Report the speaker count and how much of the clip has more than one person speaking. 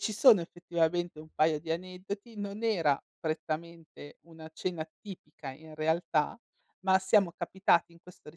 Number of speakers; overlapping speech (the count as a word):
one, no overlap